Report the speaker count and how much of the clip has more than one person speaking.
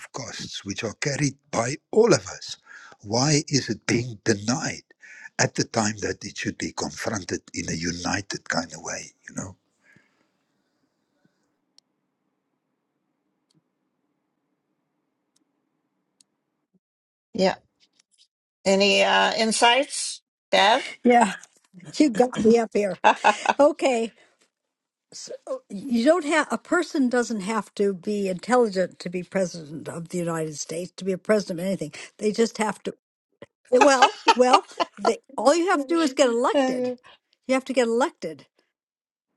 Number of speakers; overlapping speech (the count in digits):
3, no overlap